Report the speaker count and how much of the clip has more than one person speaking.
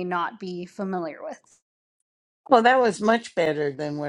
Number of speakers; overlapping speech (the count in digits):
2, no overlap